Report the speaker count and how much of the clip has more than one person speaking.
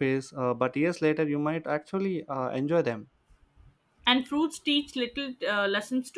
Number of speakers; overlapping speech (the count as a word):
two, no overlap